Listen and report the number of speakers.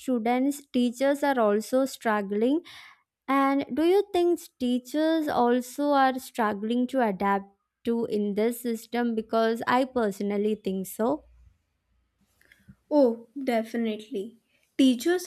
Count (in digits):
2